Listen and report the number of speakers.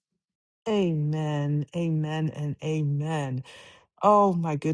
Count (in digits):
1